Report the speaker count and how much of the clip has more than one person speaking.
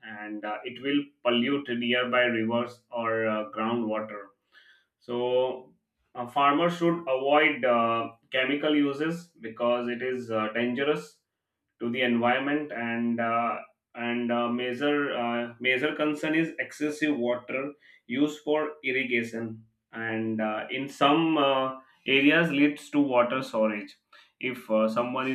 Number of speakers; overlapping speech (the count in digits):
1, no overlap